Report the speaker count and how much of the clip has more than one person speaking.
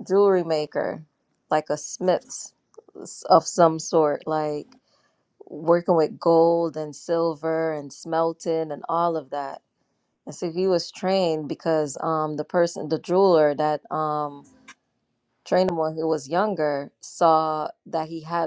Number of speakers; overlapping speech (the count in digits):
1, no overlap